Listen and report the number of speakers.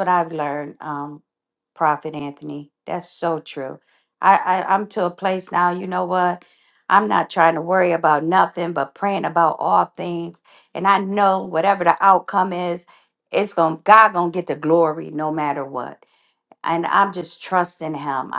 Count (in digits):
1